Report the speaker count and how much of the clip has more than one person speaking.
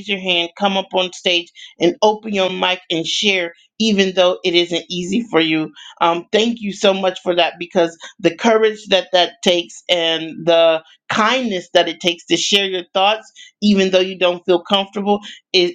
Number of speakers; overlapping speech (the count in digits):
1, no overlap